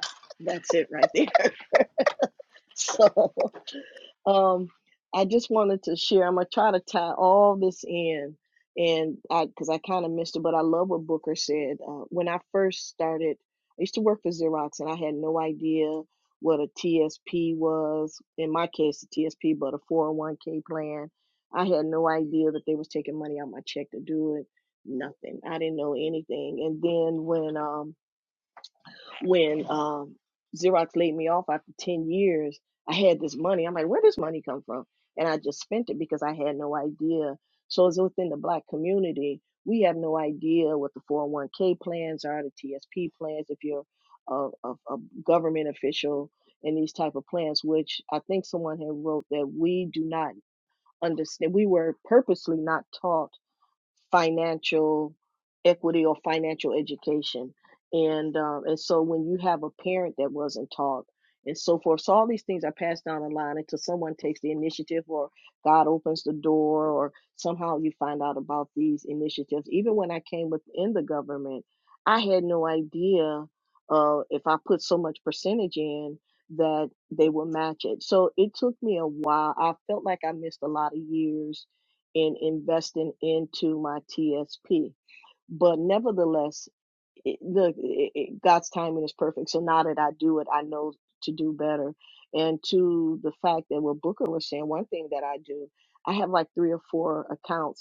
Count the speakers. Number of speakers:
1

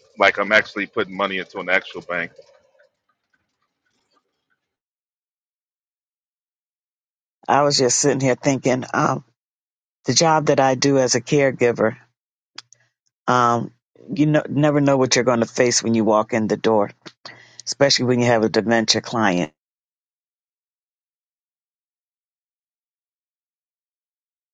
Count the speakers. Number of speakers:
2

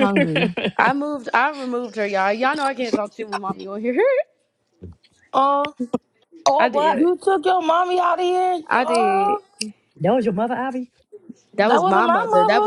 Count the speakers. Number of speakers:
3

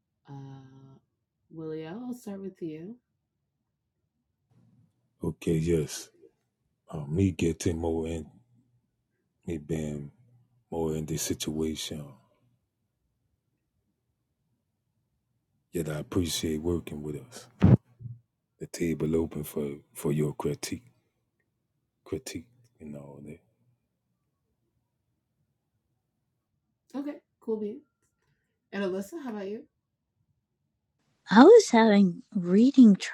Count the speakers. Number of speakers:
3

